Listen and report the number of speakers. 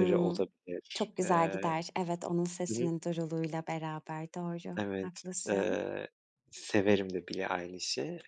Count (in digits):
2